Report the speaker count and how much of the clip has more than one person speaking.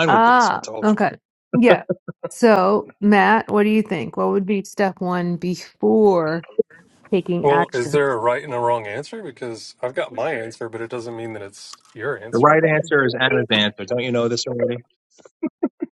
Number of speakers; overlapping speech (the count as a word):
three, about 12%